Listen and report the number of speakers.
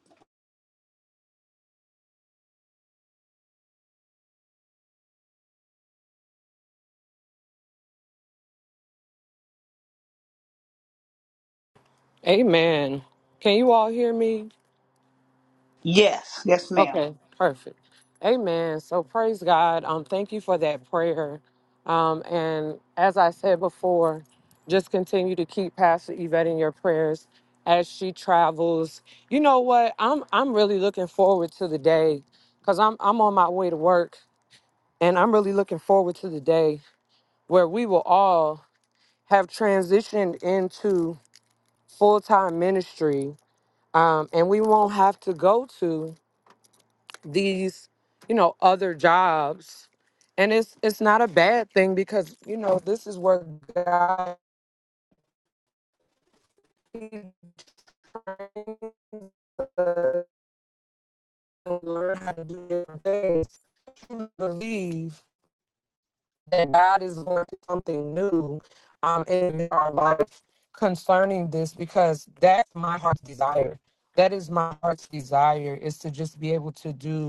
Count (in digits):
2